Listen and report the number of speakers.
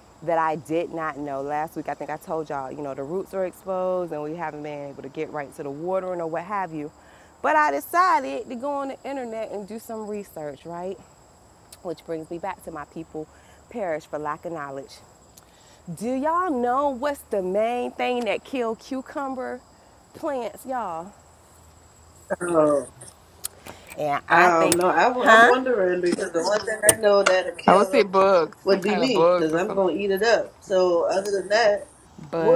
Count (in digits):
3